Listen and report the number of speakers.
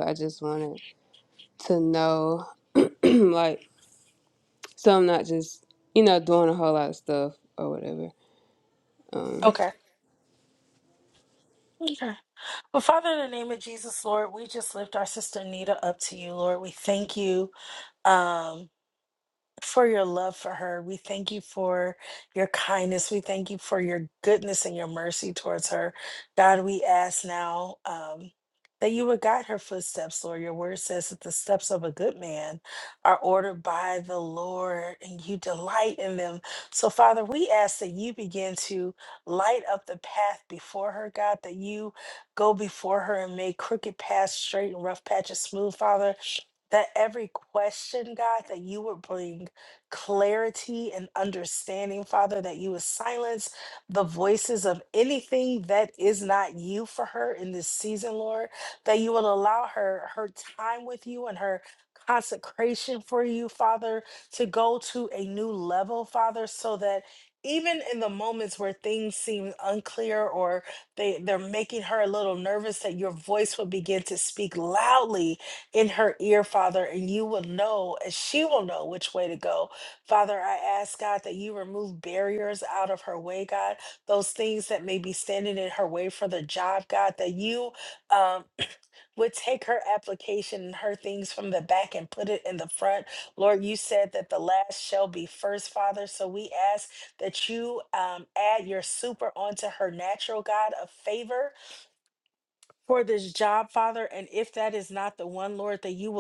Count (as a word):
two